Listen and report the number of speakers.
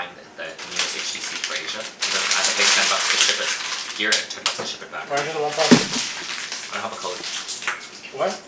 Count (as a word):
two